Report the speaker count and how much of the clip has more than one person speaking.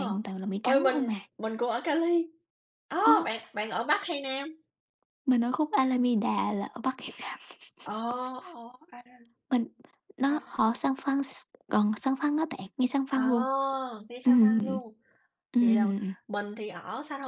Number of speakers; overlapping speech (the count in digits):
2, about 13%